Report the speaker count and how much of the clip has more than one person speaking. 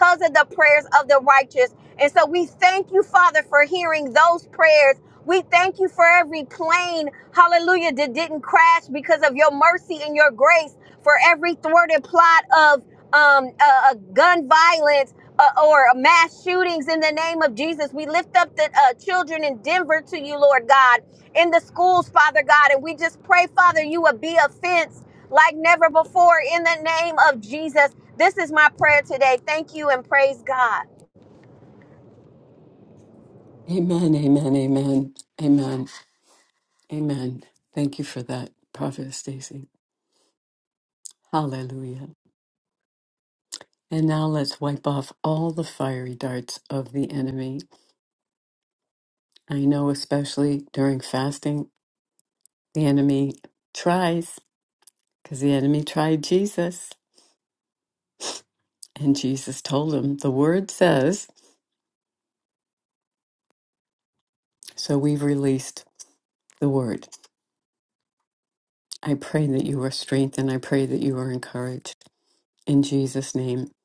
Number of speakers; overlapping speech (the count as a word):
two, no overlap